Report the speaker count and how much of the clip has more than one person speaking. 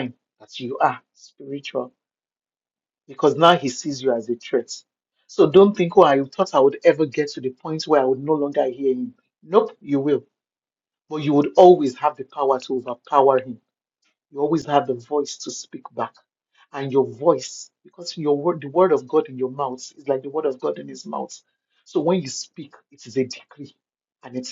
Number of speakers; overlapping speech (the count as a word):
one, no overlap